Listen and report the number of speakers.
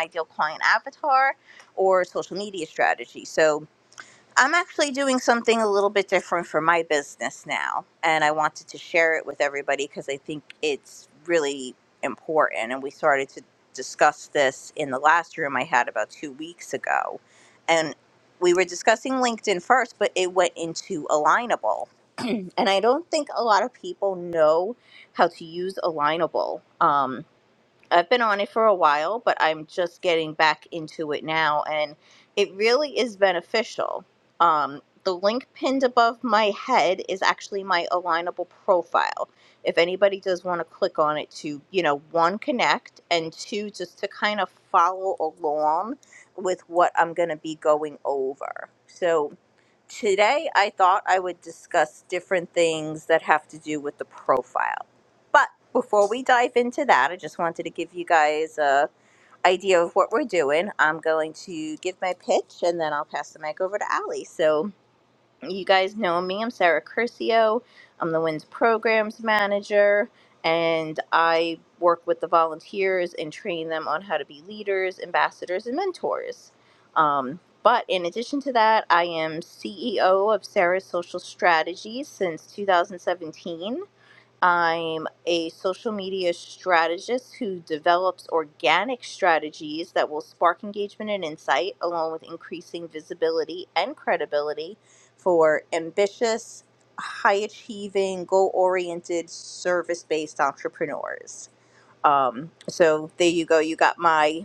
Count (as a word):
one